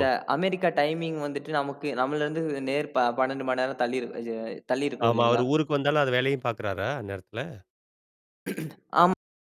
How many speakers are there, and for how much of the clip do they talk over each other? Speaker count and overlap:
two, about 6%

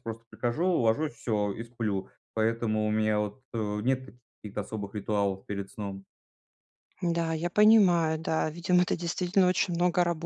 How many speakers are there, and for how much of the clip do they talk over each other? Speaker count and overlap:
two, no overlap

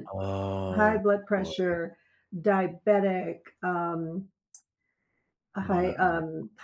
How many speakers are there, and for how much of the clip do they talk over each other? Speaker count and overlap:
two, about 21%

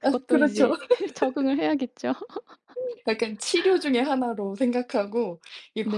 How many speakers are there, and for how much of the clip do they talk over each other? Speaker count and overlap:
two, about 14%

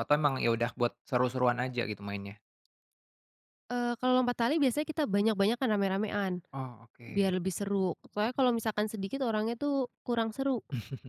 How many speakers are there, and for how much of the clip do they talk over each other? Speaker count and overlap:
two, about 2%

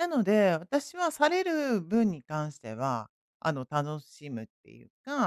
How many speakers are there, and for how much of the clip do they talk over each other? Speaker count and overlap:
one, no overlap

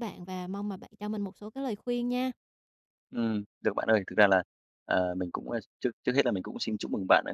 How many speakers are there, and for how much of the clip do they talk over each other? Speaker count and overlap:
two, no overlap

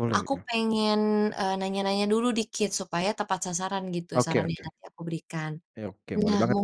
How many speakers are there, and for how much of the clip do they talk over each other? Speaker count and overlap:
two, about 19%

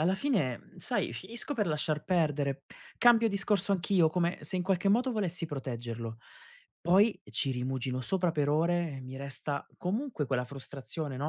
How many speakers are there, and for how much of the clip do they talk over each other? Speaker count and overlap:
one, no overlap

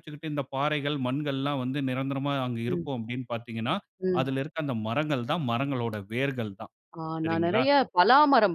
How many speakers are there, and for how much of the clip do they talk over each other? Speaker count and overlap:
two, about 9%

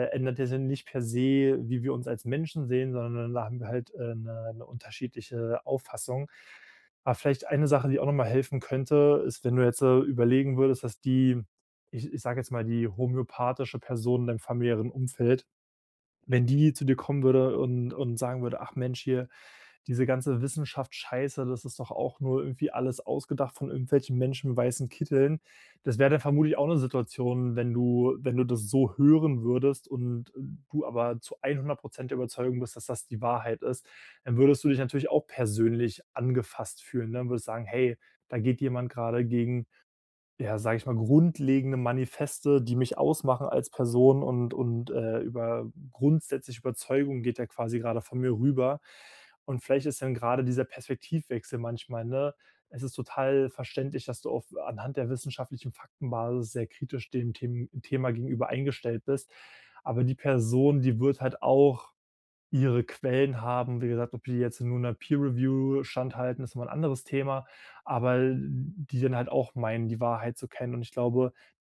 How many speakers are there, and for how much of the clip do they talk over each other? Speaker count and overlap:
one, no overlap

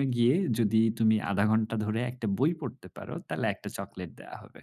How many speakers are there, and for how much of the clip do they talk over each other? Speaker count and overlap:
one, no overlap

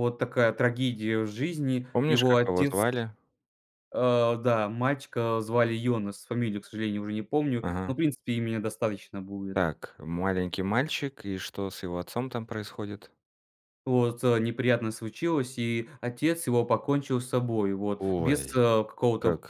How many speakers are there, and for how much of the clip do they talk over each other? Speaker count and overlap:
two, about 10%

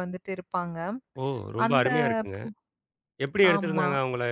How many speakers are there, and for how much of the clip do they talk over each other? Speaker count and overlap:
two, about 18%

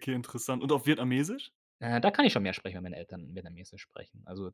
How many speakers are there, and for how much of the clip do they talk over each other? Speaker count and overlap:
two, no overlap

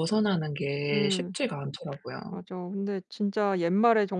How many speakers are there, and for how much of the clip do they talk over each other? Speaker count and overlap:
two, about 12%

